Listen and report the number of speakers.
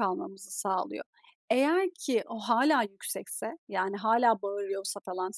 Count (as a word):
one